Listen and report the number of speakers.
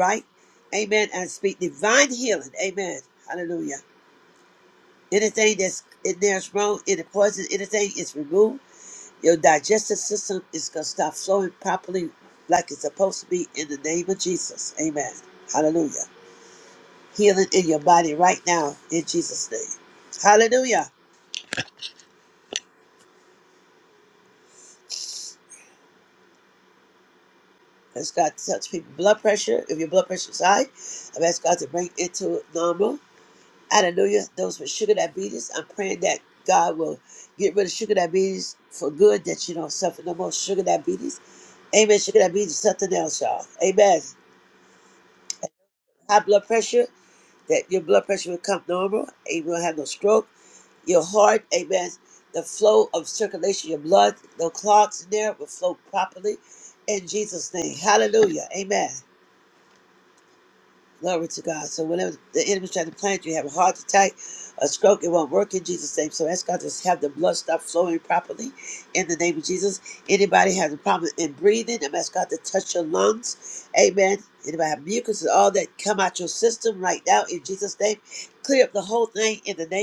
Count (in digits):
1